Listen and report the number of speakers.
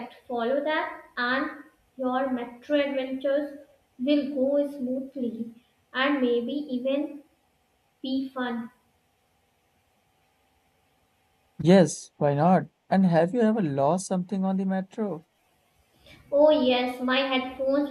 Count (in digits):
2